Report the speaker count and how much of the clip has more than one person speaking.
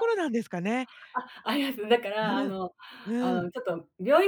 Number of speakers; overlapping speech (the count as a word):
two, about 13%